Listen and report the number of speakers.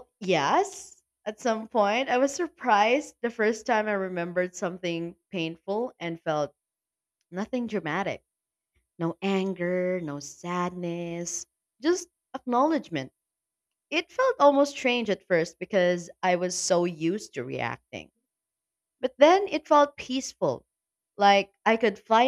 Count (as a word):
one